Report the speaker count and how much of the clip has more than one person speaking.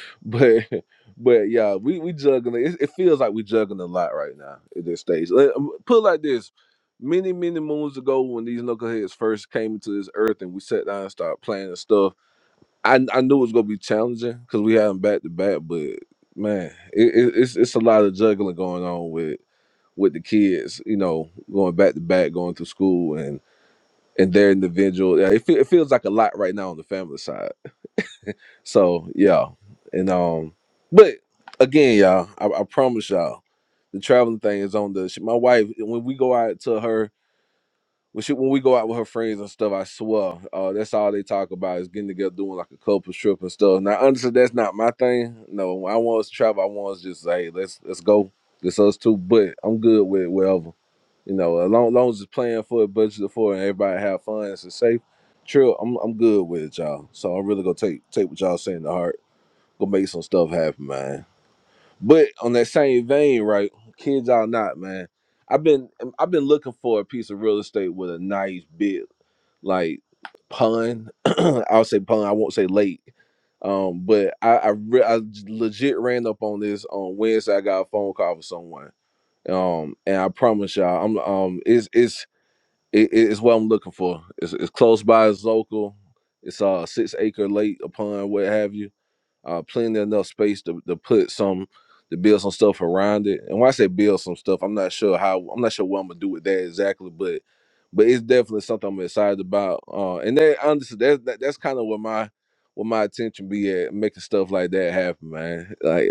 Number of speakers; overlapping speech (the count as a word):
one, no overlap